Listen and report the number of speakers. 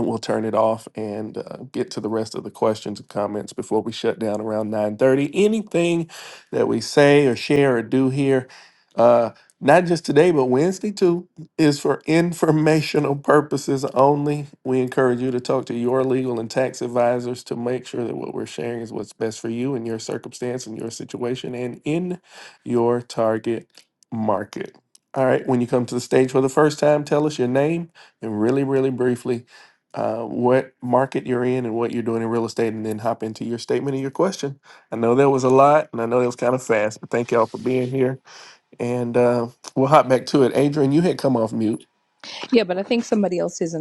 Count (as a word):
two